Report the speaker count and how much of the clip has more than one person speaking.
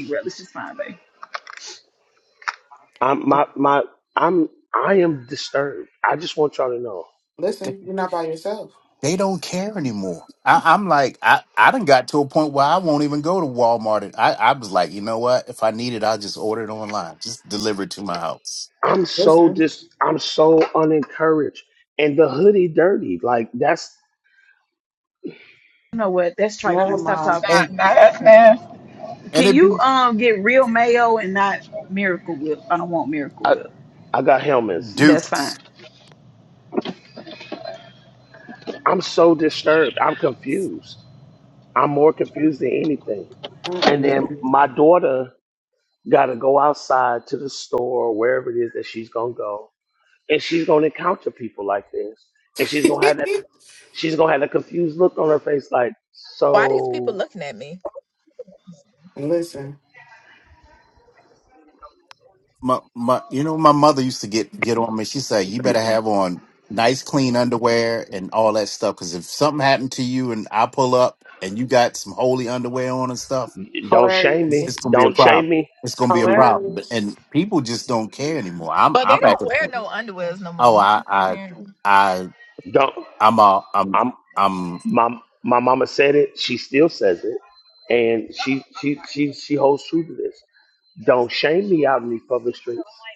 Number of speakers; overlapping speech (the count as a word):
five, about 8%